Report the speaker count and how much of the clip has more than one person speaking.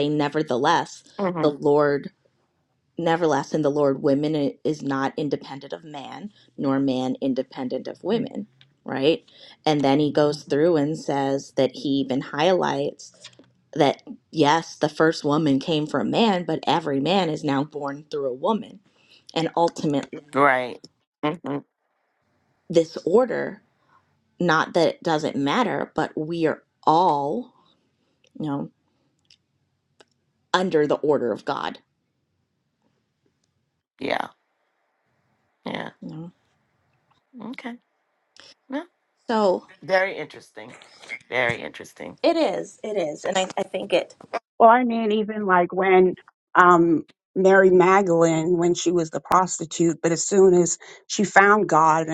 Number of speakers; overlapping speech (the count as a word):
three, under 1%